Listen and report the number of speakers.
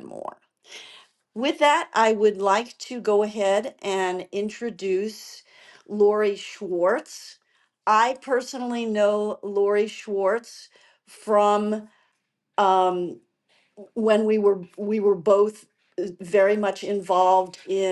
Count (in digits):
1